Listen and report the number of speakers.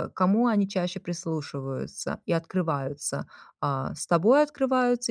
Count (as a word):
one